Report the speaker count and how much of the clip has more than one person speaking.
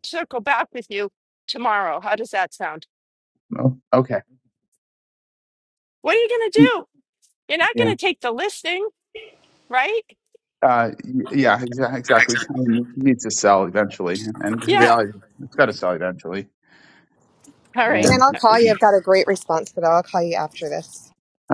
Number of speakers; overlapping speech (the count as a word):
three, about 5%